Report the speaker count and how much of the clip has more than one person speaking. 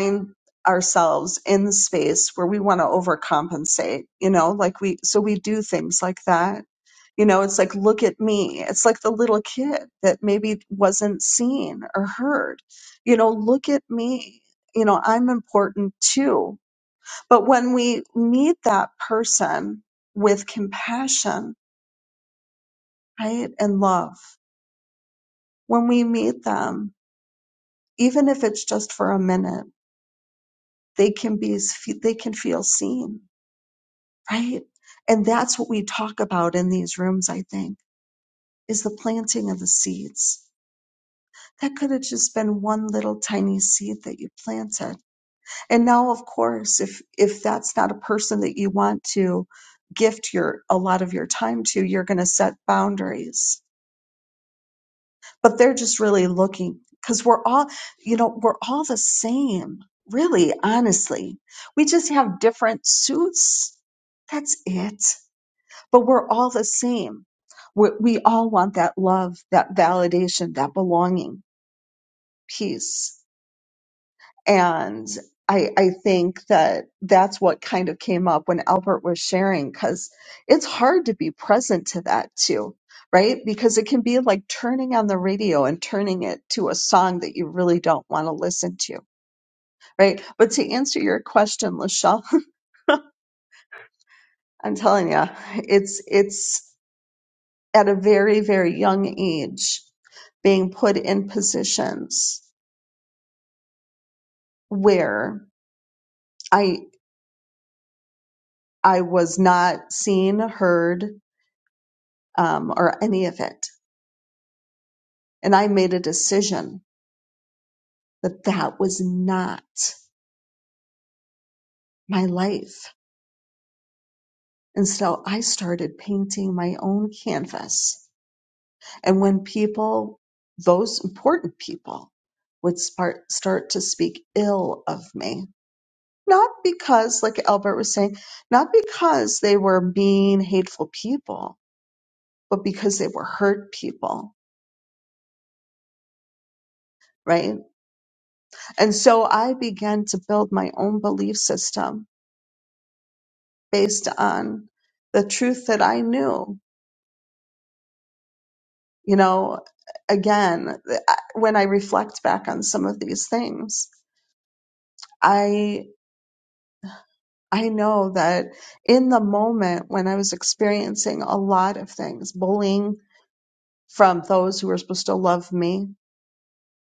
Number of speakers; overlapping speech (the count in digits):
1, no overlap